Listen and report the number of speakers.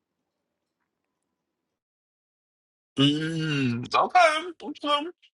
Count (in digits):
1